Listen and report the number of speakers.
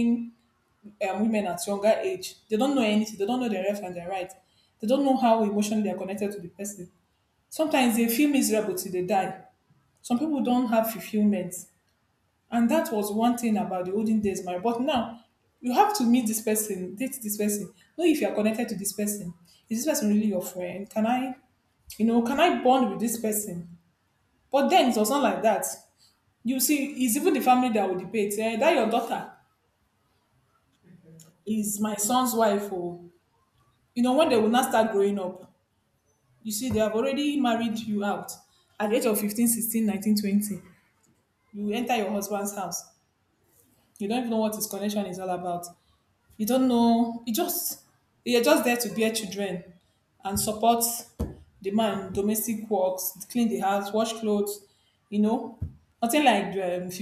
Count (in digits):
1